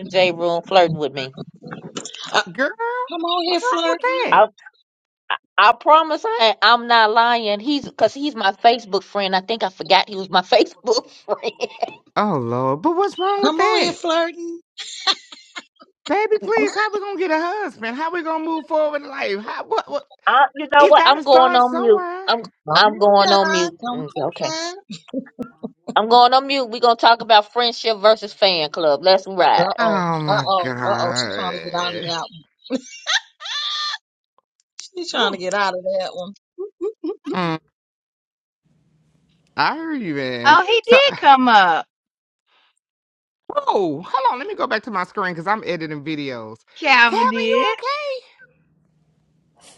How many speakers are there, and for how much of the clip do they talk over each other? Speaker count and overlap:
4, about 17%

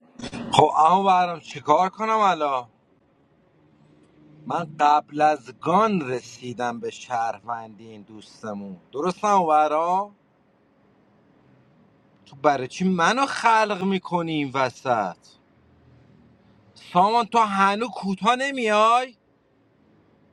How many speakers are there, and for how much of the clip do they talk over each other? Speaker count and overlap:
1, no overlap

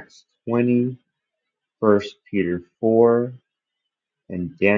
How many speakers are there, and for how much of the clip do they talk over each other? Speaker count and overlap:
1, no overlap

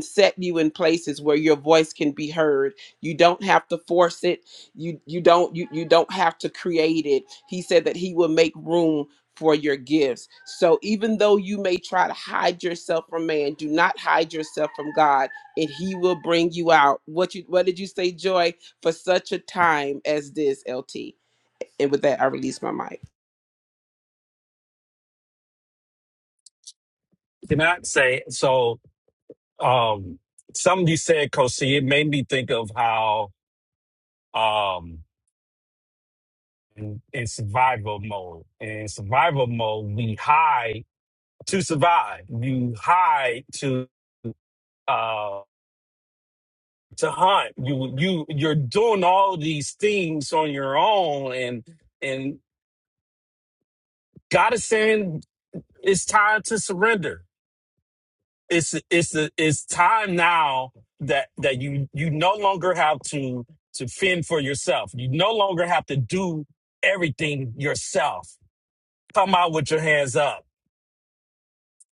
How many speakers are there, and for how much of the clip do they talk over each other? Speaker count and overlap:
2, no overlap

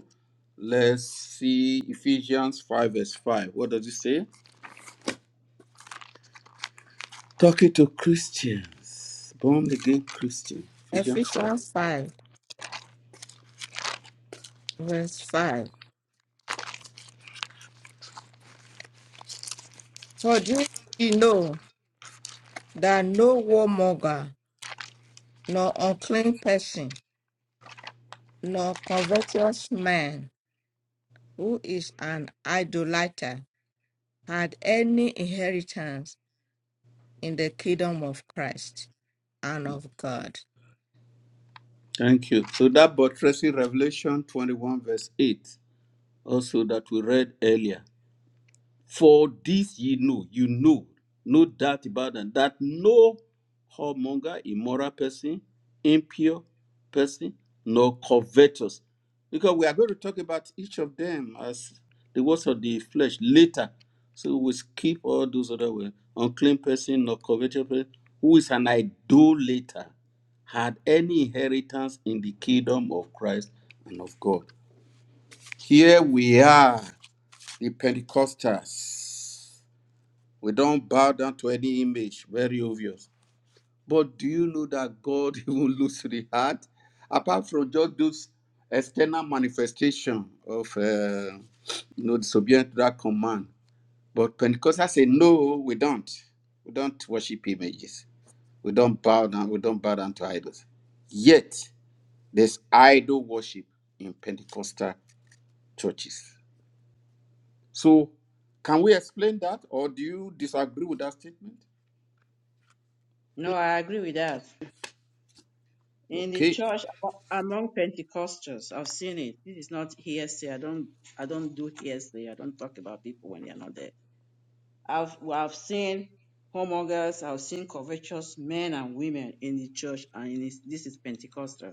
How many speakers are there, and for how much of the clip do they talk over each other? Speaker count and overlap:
3, about 1%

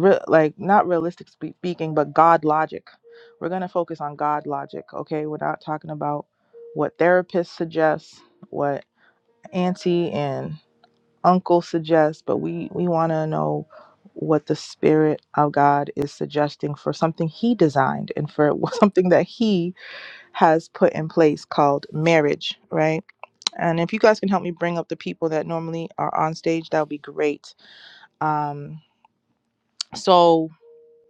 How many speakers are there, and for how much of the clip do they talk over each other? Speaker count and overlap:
1, no overlap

